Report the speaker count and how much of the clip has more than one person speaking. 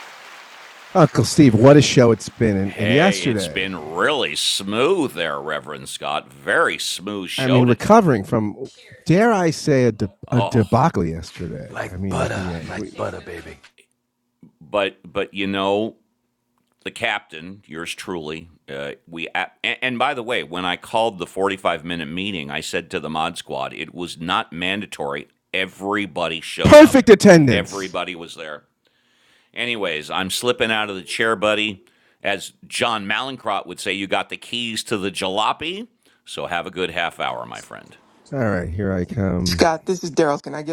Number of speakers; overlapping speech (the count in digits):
4, about 10%